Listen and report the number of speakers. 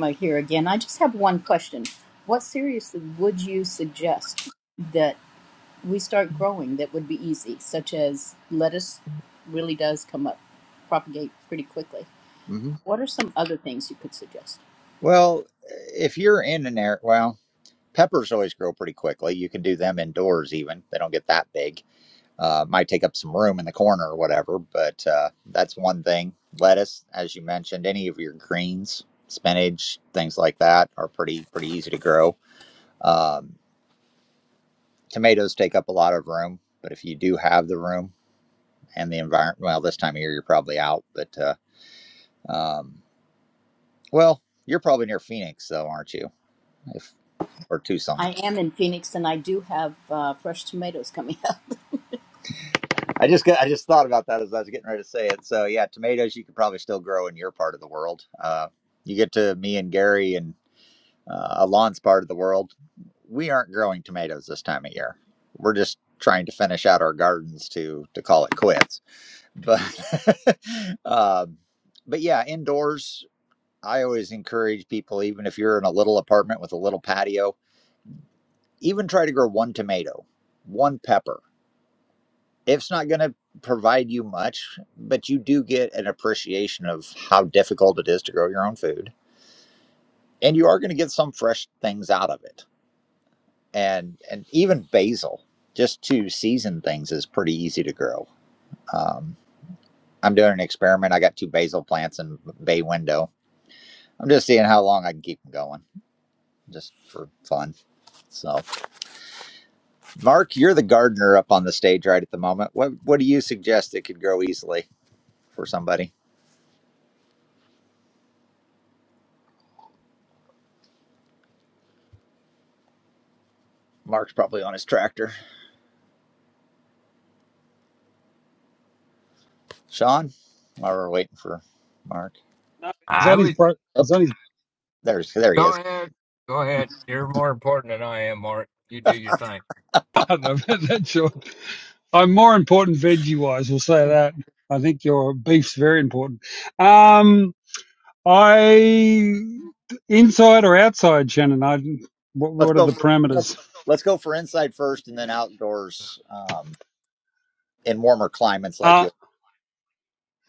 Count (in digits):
4